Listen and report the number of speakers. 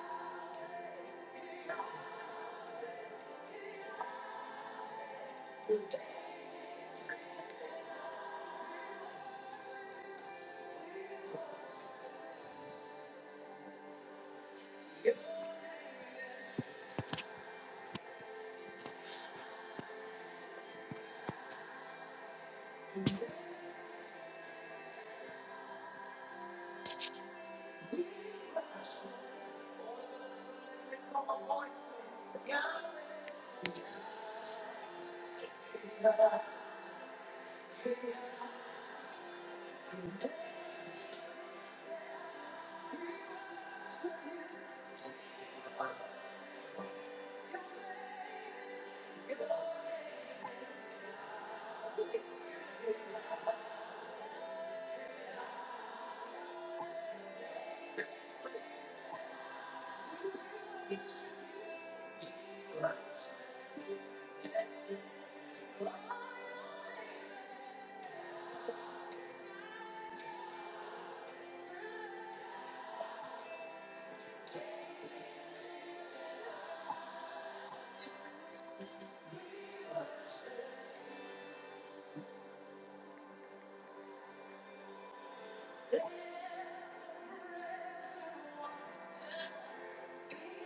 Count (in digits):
0